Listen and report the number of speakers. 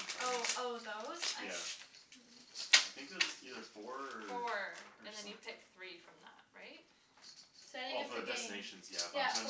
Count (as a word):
three